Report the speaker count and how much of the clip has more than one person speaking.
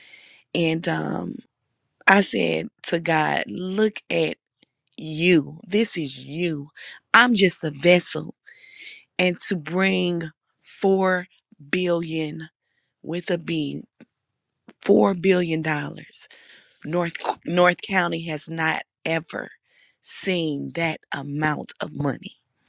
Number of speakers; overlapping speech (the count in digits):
1, no overlap